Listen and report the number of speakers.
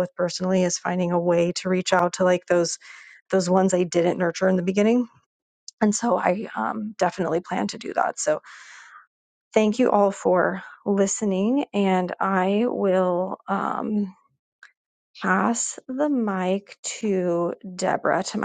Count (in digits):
1